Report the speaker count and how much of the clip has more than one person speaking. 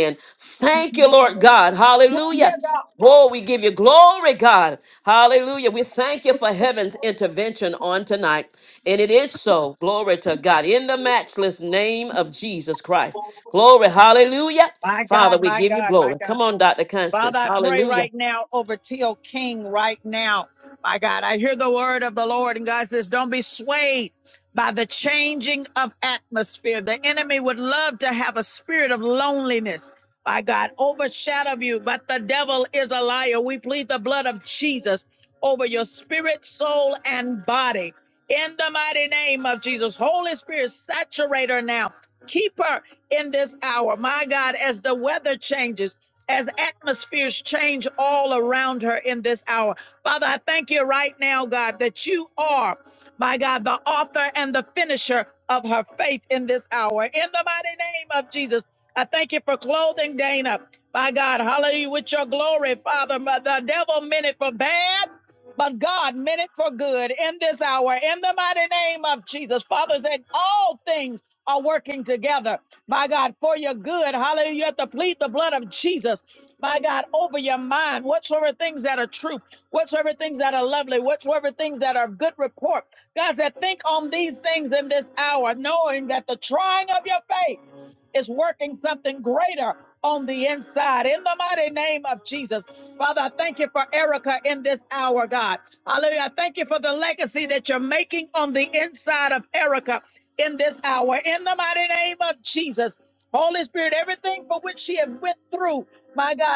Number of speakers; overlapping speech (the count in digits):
2, about 2%